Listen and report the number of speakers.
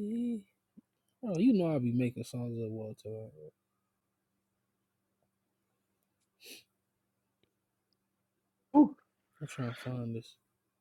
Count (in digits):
1